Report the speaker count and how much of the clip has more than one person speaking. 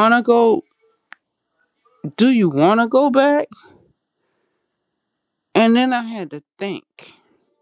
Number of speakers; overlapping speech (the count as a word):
one, no overlap